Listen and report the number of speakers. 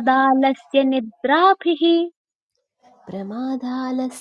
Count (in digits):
2